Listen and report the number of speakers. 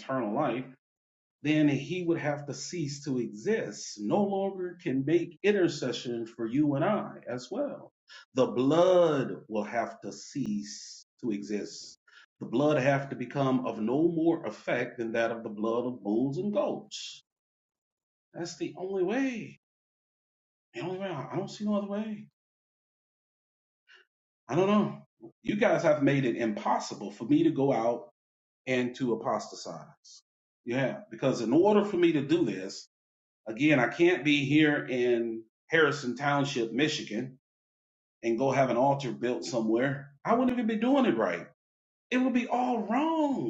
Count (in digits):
1